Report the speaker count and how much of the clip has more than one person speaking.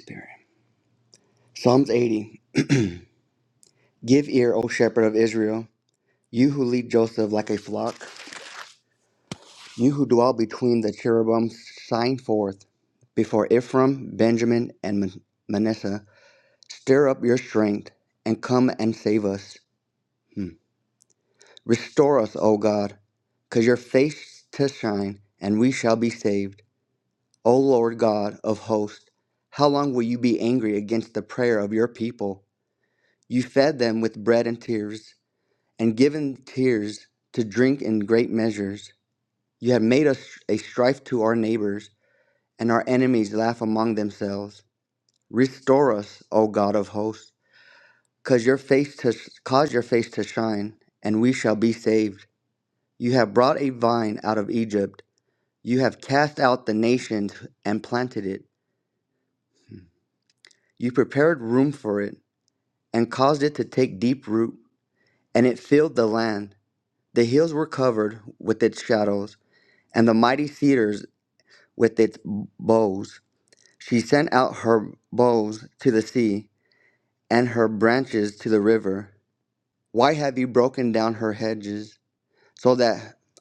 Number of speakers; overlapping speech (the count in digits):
1, no overlap